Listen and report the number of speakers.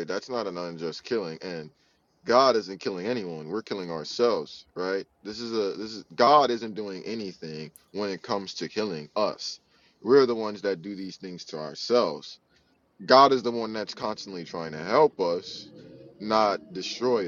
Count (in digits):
1